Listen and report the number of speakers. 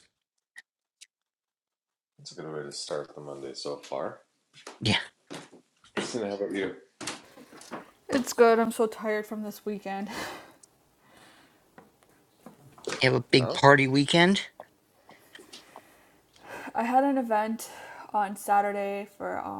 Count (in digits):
3